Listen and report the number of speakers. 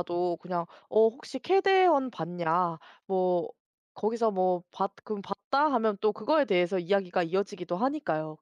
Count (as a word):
one